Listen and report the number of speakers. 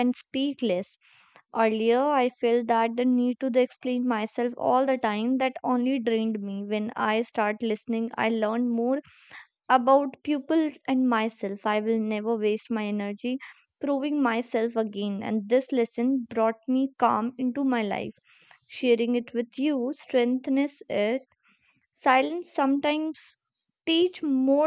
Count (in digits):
1